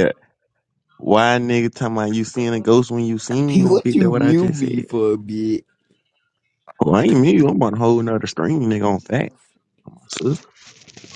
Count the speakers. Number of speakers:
two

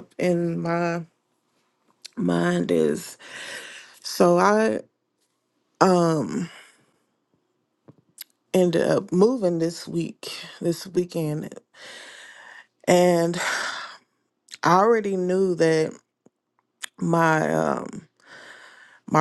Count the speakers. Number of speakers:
one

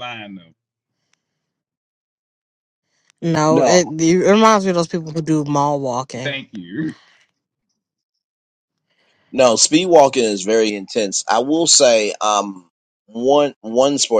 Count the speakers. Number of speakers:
three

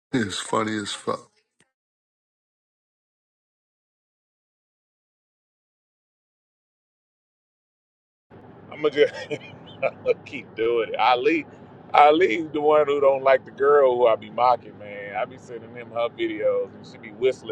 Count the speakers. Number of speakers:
two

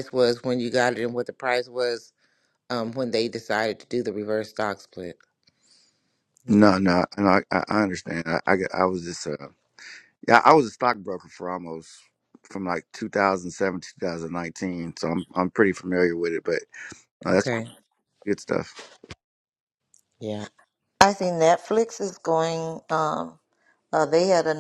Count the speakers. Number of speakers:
three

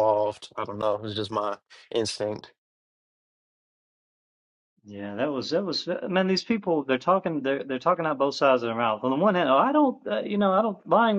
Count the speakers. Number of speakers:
two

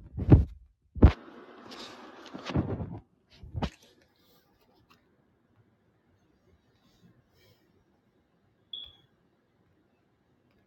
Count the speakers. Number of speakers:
zero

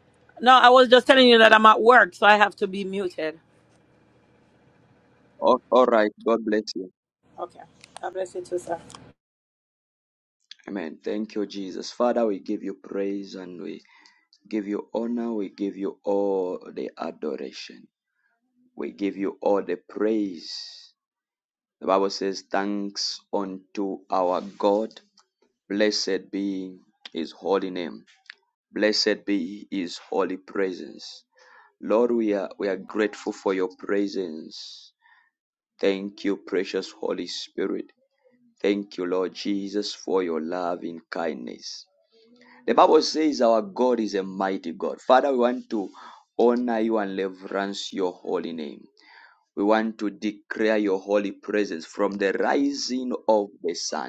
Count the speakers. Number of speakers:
two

